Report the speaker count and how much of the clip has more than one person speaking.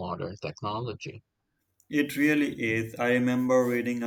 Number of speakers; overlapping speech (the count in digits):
2, no overlap